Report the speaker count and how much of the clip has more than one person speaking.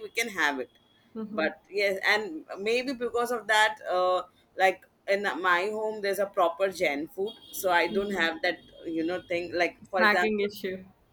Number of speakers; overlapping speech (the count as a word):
two, about 9%